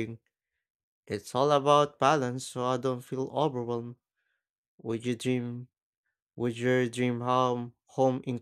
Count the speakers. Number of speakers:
one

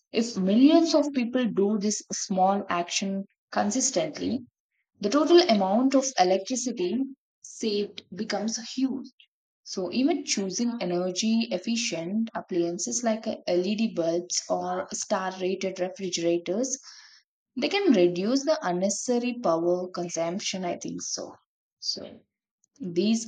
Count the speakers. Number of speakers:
one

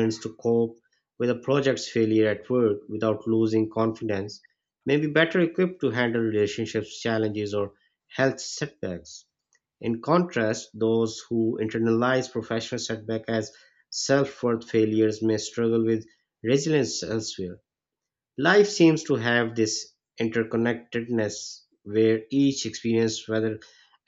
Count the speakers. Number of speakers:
one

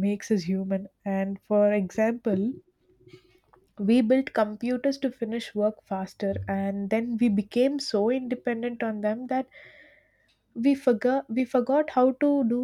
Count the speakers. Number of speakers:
one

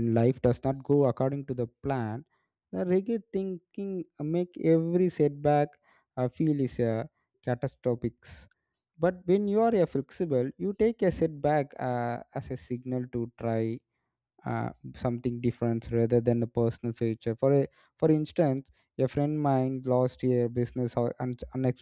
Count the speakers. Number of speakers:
one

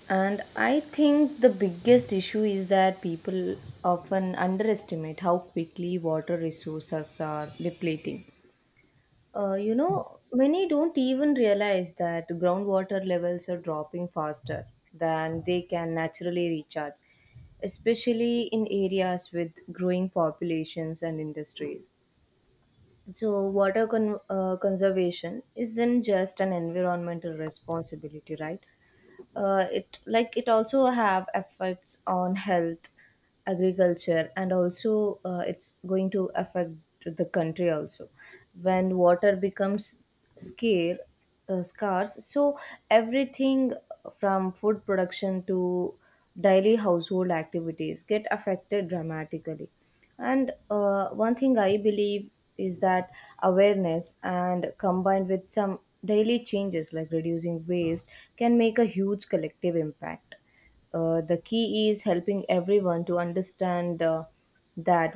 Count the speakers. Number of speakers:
one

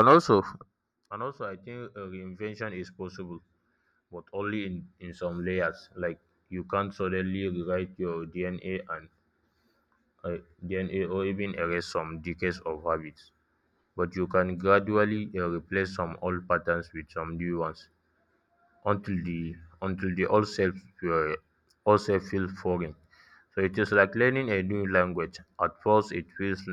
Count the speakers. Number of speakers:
one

